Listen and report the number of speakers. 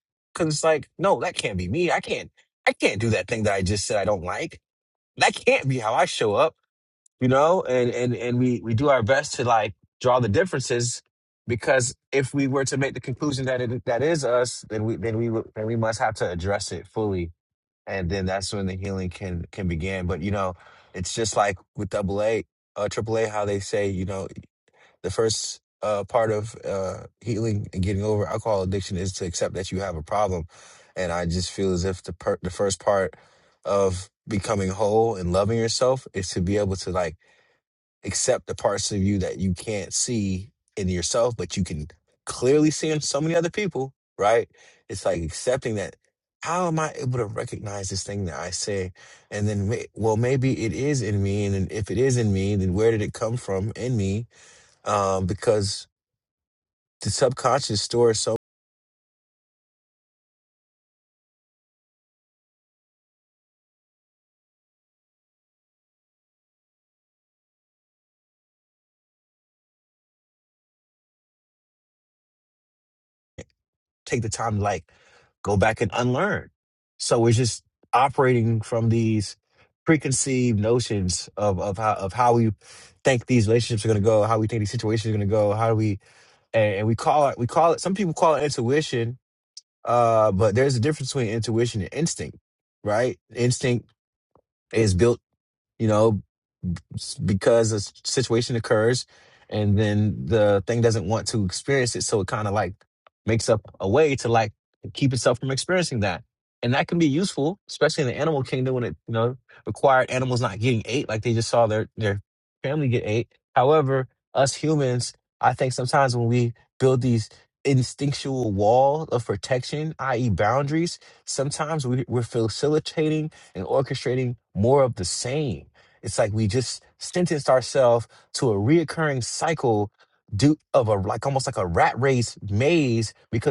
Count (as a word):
one